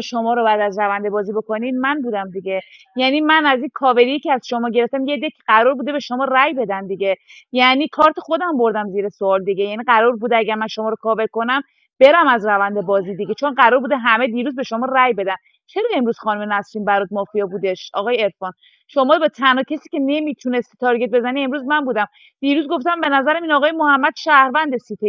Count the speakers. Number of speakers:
1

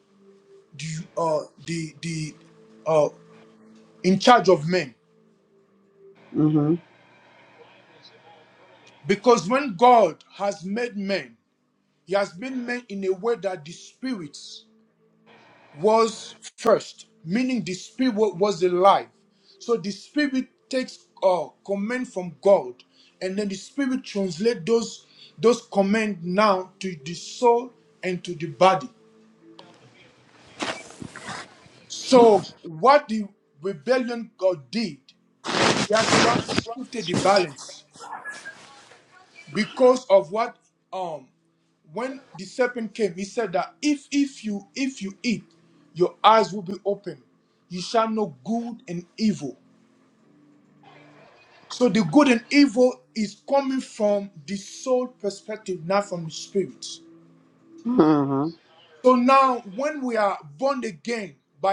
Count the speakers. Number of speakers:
2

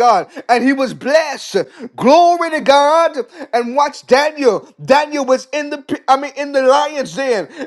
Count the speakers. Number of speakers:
1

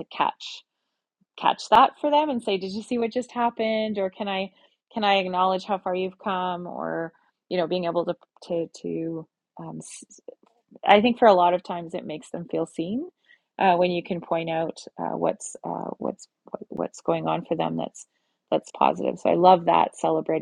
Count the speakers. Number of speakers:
1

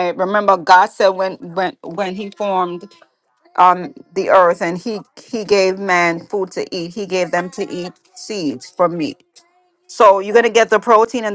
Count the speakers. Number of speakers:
1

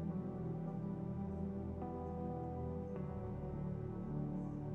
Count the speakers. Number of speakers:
0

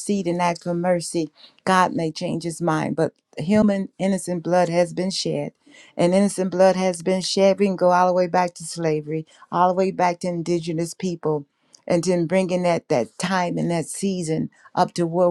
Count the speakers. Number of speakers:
1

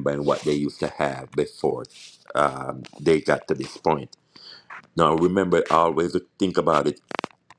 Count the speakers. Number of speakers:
1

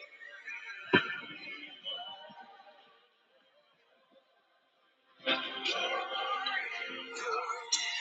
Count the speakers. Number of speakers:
0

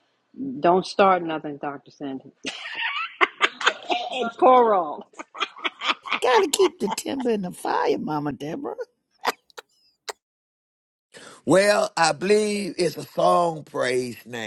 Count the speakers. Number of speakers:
3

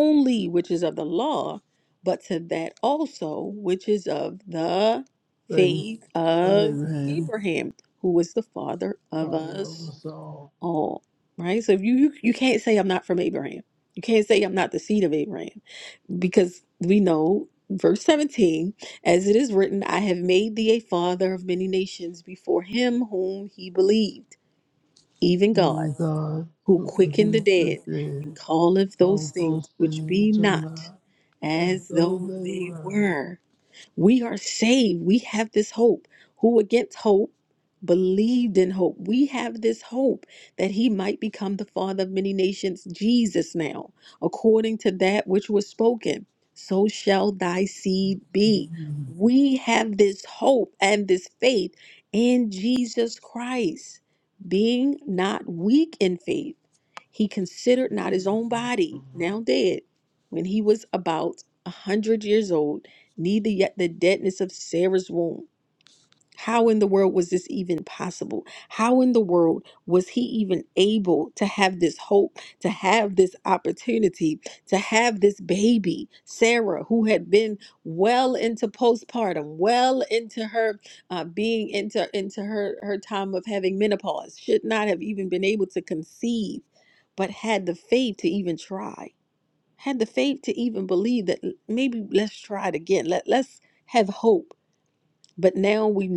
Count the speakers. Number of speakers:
2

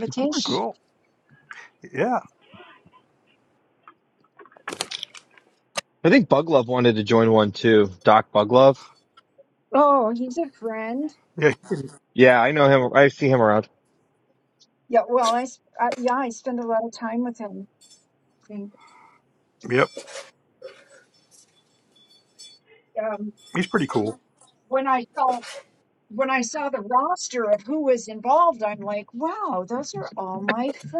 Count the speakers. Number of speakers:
3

